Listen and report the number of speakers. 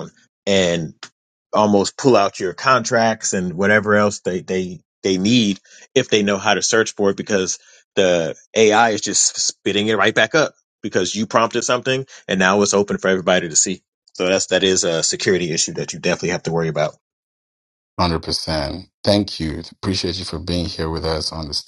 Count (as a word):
two